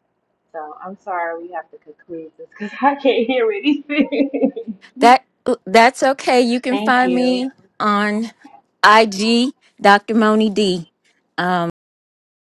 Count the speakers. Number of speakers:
2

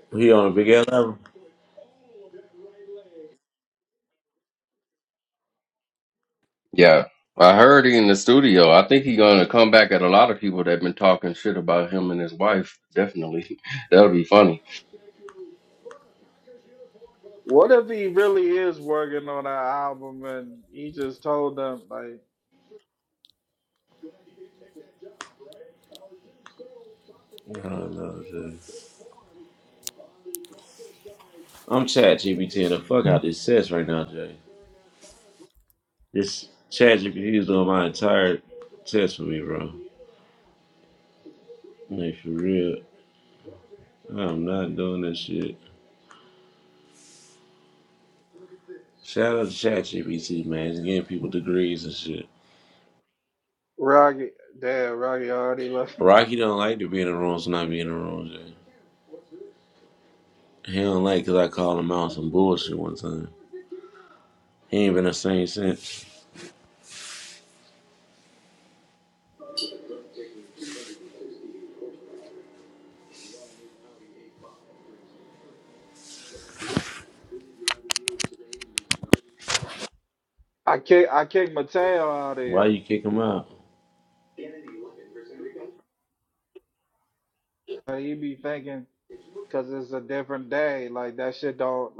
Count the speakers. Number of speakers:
3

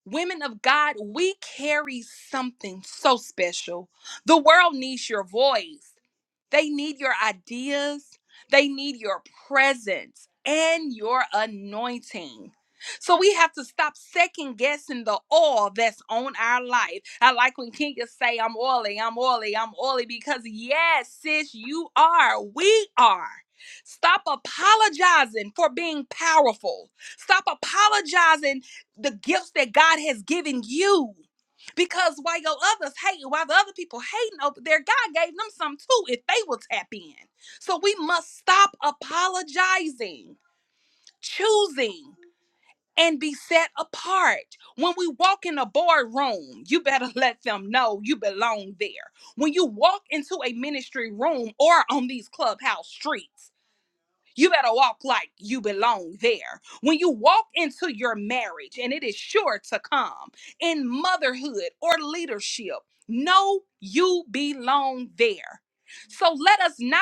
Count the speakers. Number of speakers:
1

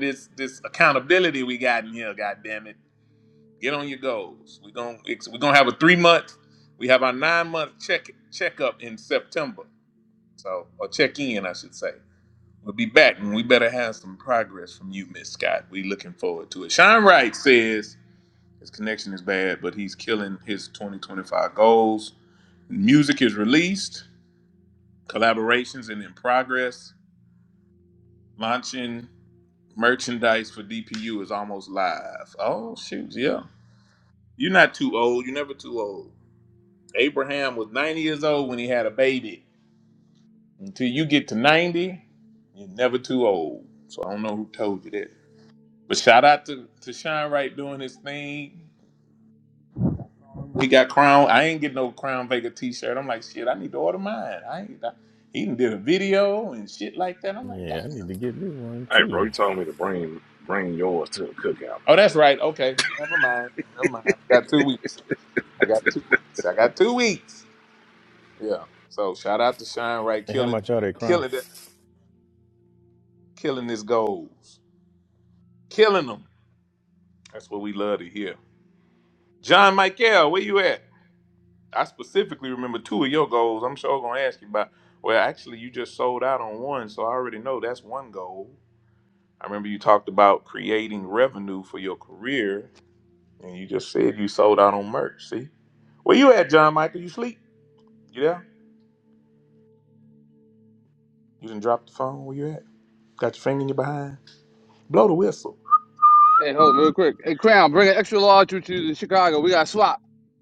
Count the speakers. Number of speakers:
4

